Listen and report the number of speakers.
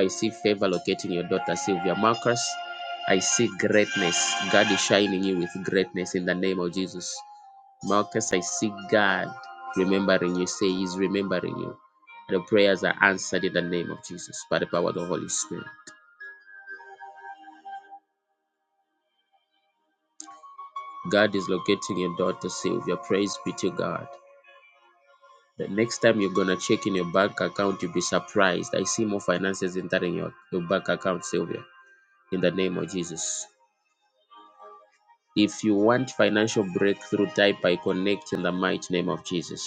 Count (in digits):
1